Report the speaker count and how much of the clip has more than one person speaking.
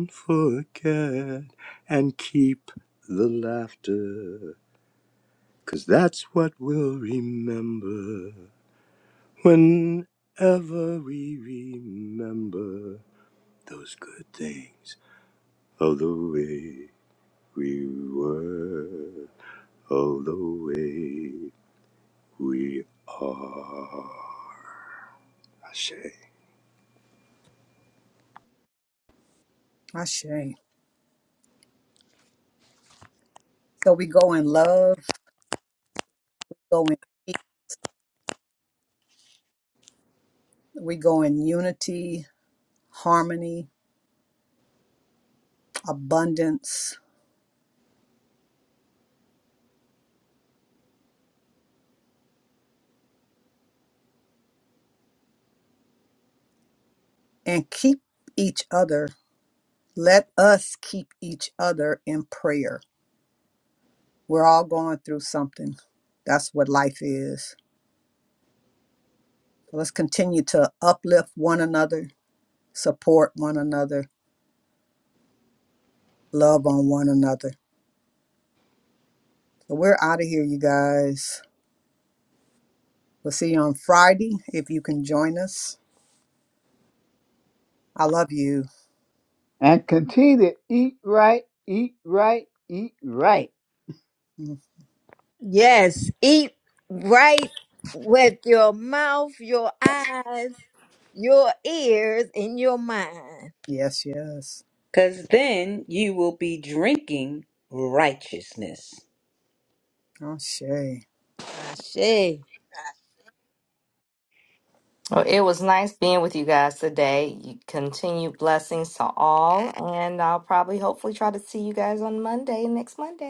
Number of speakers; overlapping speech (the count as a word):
six, no overlap